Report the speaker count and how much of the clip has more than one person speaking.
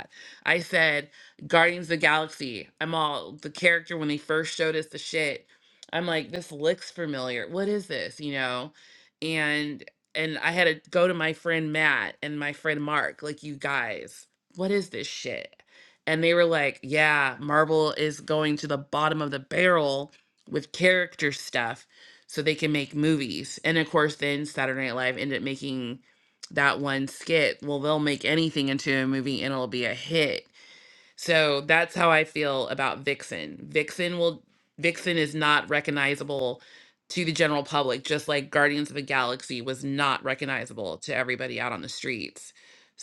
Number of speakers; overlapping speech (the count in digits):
1, no overlap